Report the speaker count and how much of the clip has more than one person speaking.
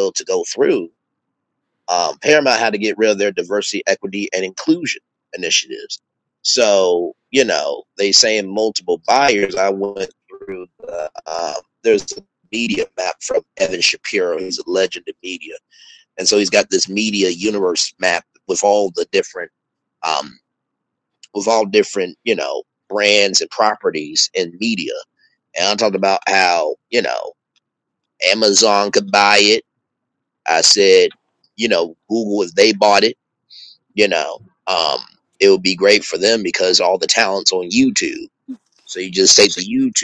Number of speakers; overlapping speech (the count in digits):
1, no overlap